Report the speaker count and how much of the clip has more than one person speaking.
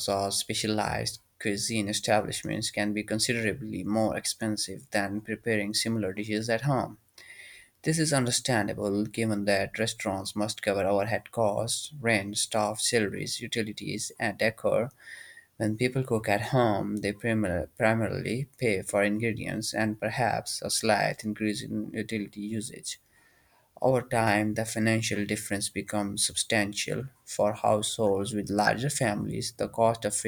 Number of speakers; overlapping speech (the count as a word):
one, no overlap